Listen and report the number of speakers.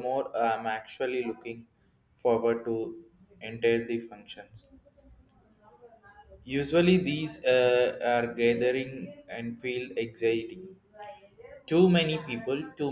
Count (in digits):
1